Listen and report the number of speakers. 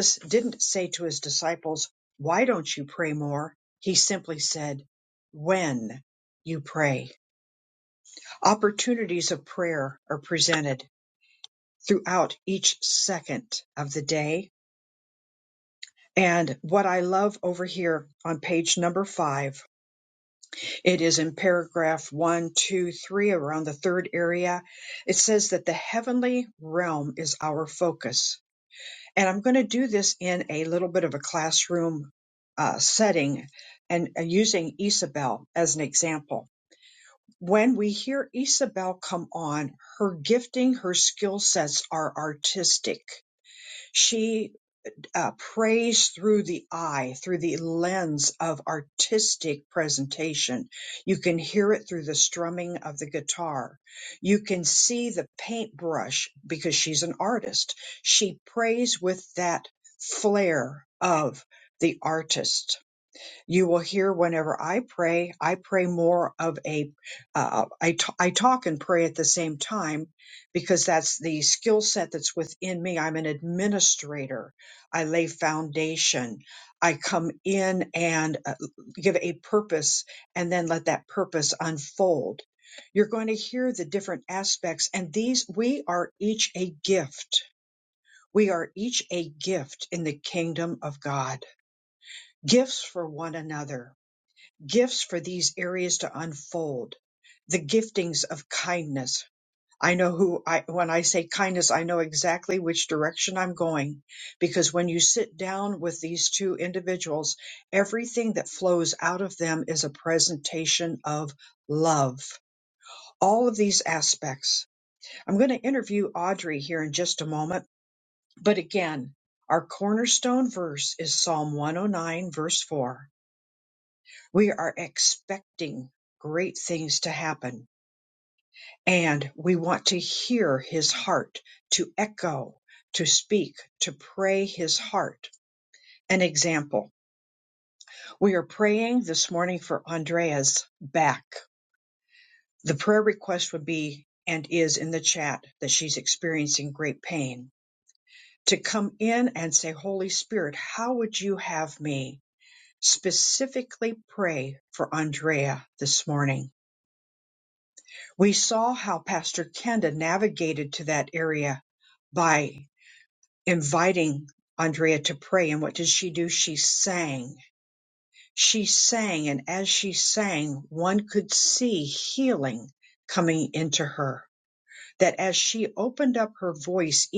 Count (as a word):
one